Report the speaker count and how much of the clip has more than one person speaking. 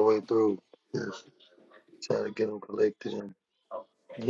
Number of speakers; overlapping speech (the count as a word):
one, no overlap